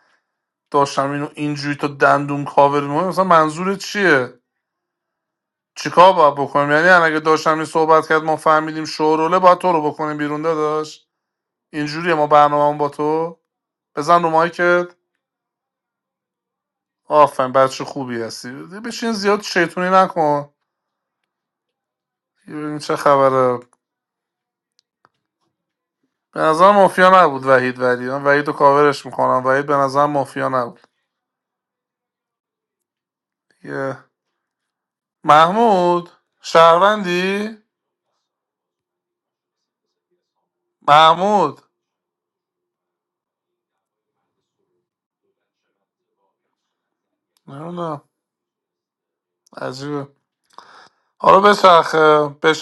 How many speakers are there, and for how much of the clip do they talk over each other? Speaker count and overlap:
1, no overlap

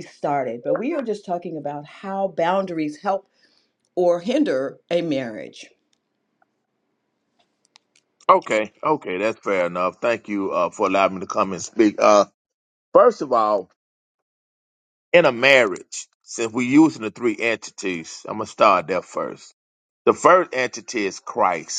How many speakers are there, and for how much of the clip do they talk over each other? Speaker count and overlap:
2, no overlap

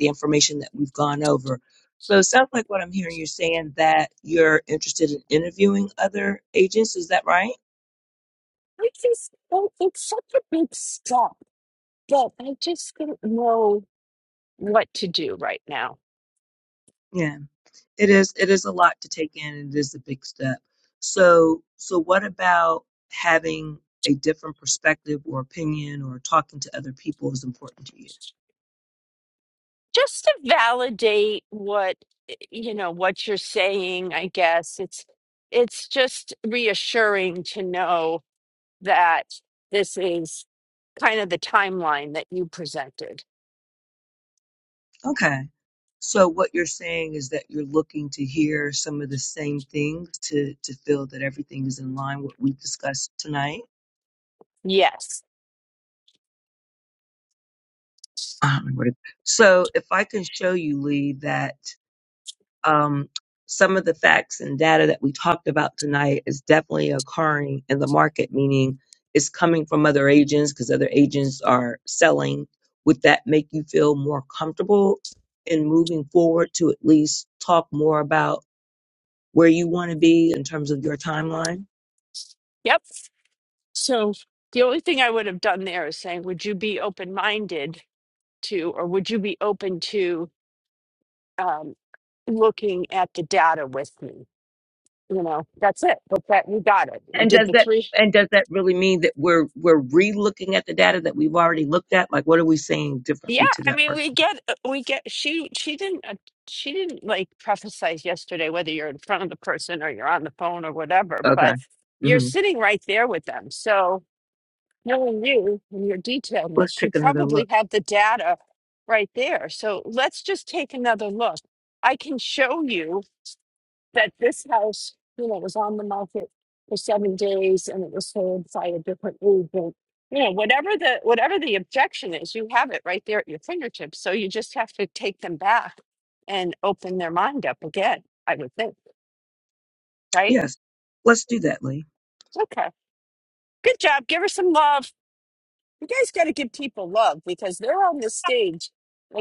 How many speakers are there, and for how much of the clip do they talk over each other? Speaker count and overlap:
2, about 2%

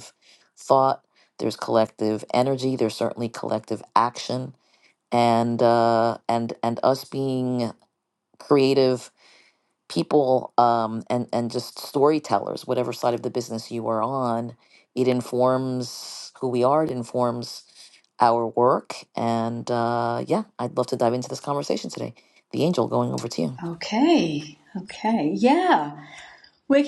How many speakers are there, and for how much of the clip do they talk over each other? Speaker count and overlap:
2, no overlap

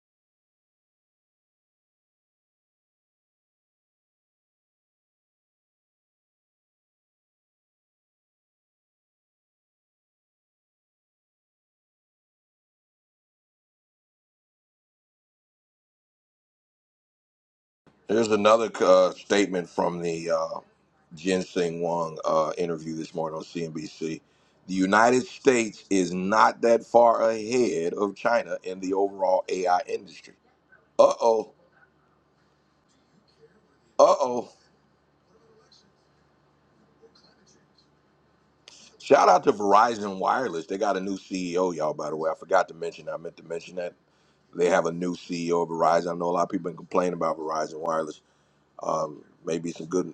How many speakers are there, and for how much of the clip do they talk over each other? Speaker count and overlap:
1, no overlap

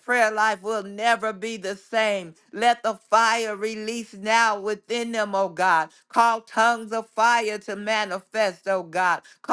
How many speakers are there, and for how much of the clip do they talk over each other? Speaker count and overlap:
1, no overlap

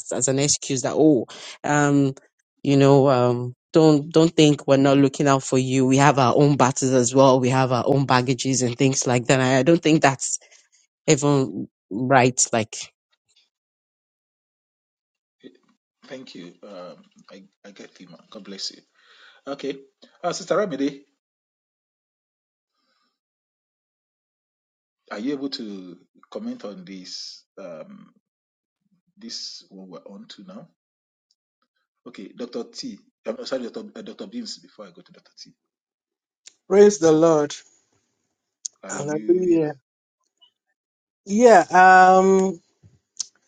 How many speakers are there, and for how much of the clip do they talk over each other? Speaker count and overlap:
3, about 2%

